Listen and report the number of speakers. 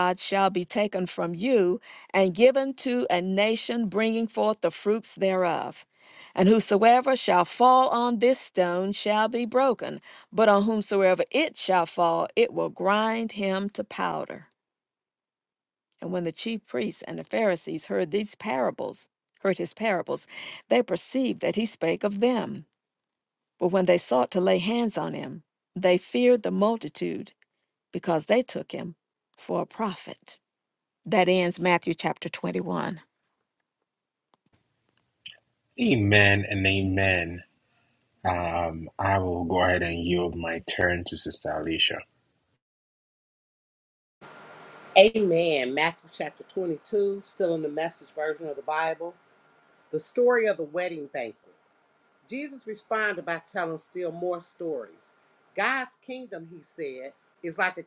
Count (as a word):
three